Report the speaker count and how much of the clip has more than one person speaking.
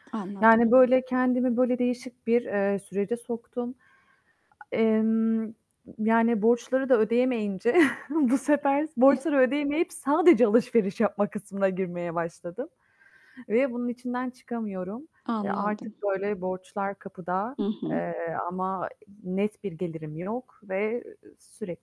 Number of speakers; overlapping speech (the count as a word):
two, about 4%